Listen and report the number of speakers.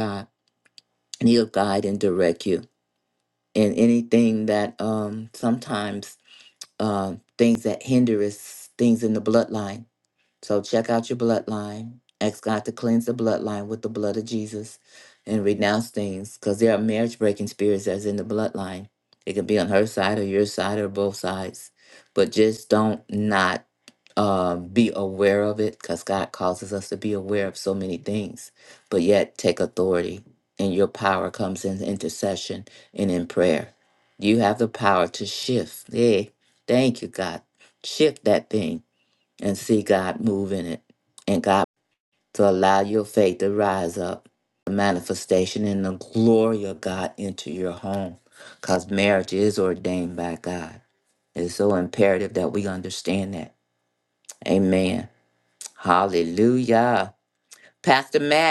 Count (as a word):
one